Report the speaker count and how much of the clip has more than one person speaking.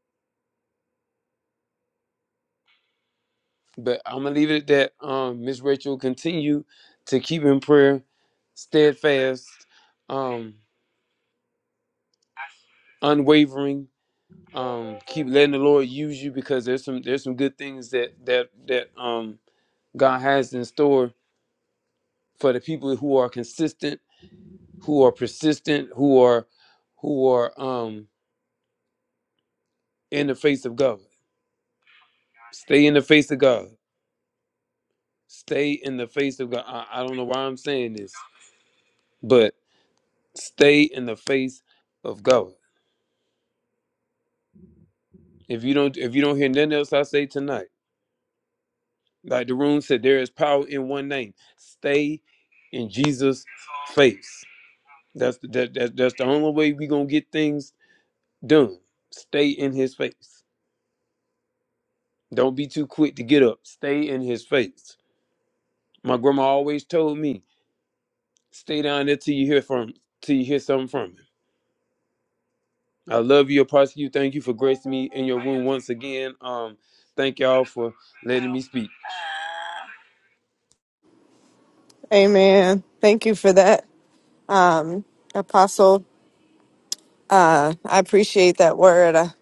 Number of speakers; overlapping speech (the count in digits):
2, no overlap